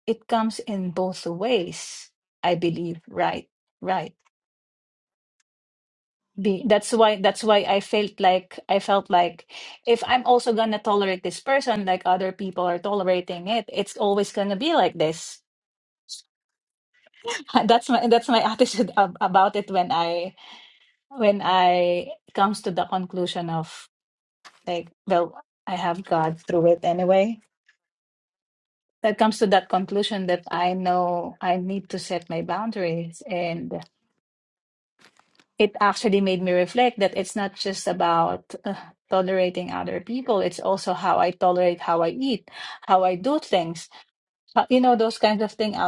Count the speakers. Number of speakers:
1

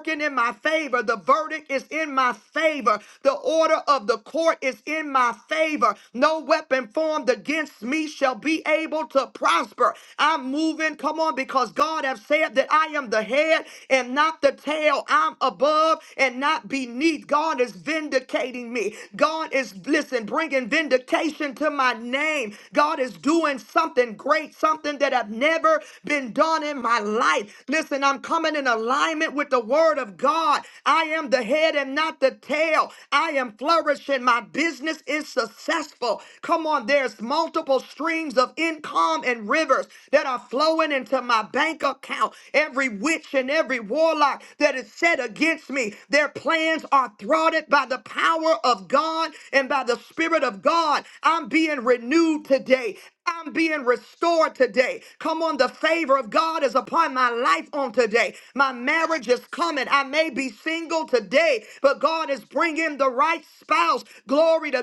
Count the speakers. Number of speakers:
1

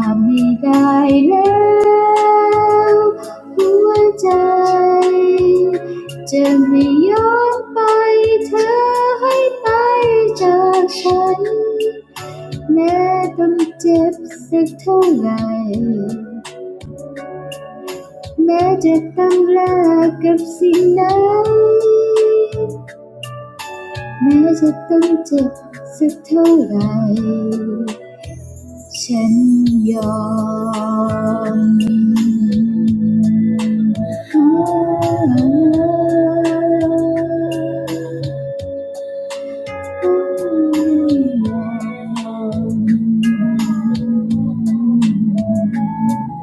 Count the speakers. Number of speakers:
1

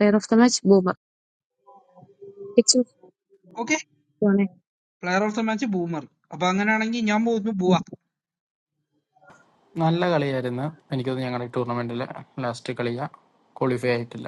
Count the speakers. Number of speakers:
3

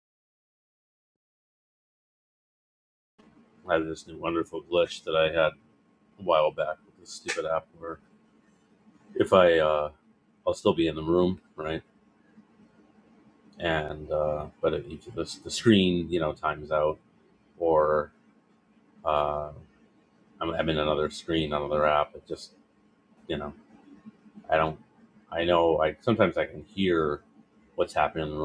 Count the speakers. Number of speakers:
1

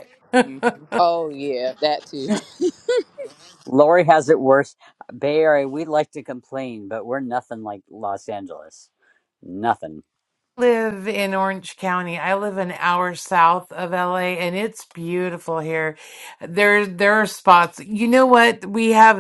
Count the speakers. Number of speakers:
3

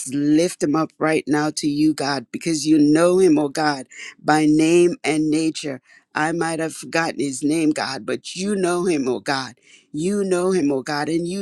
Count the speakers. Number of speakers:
1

